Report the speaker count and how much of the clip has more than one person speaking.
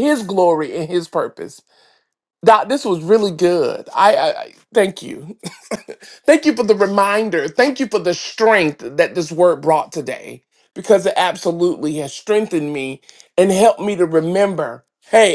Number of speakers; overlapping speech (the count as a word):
one, no overlap